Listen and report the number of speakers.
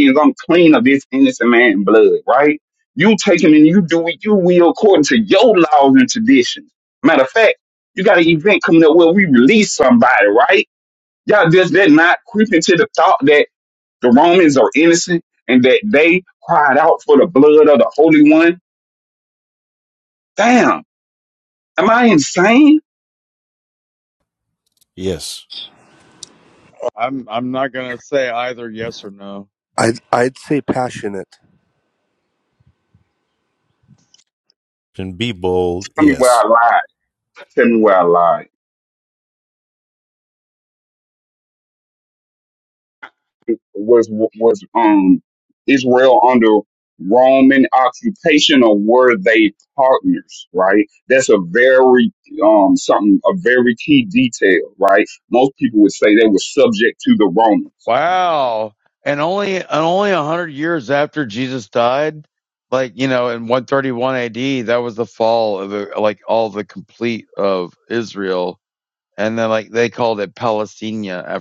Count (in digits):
4